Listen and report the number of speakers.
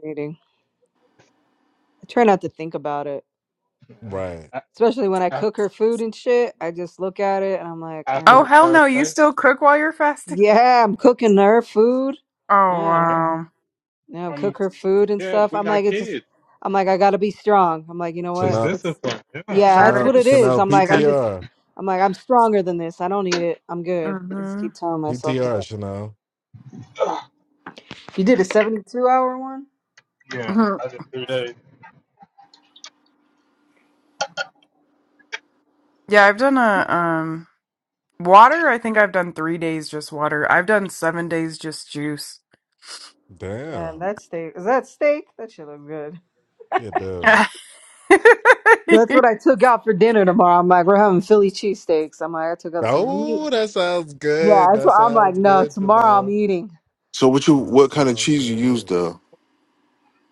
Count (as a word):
five